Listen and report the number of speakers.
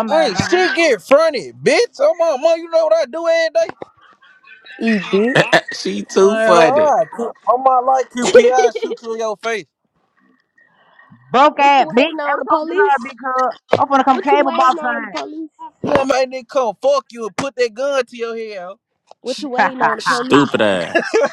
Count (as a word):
four